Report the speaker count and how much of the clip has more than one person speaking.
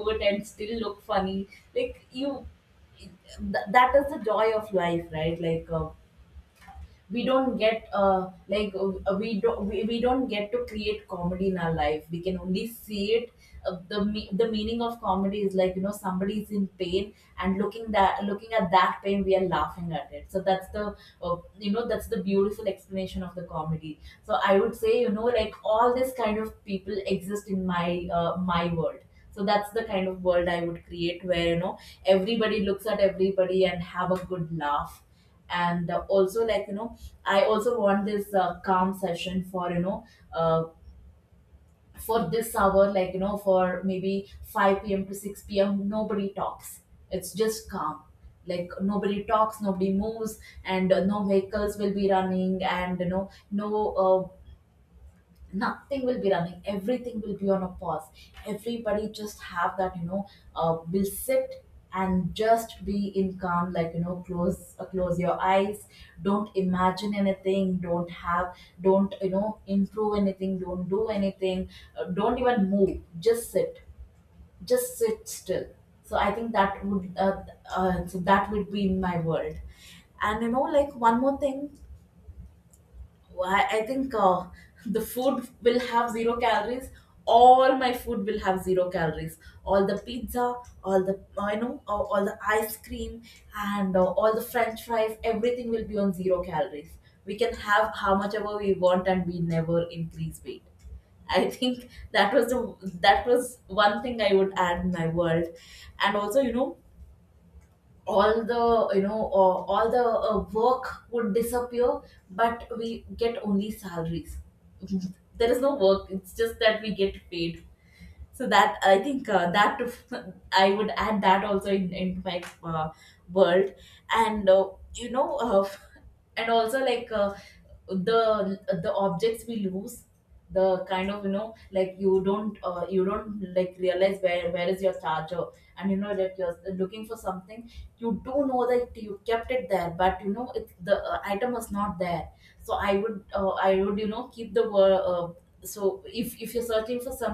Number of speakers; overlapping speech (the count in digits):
1, no overlap